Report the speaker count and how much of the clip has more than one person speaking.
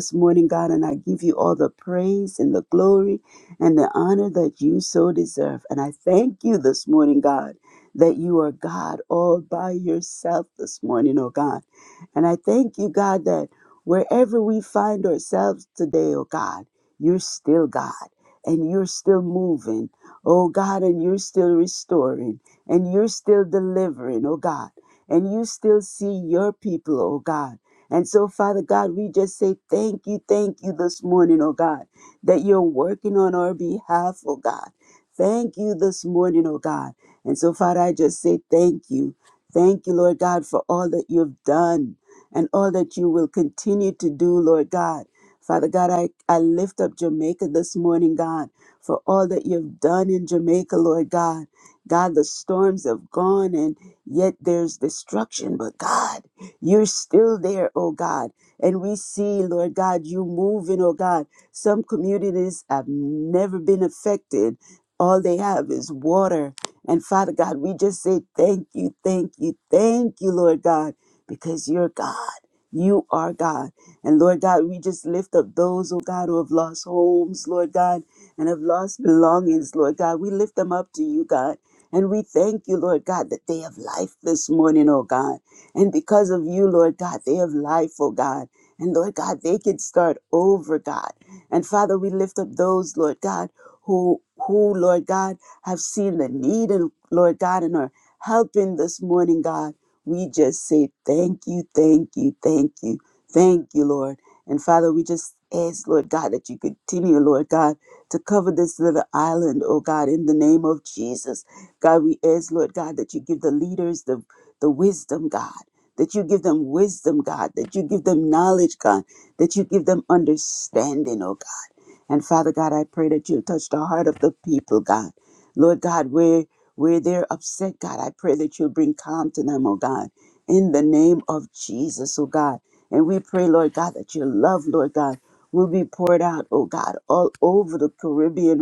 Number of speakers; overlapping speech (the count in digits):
1, no overlap